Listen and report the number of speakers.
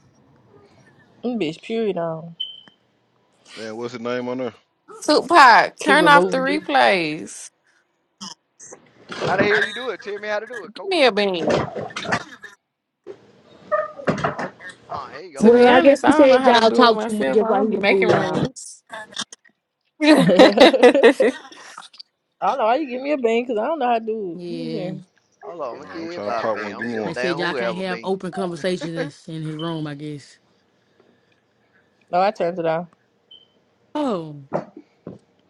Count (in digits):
5